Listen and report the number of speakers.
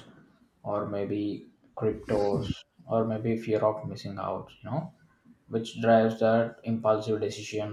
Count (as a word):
one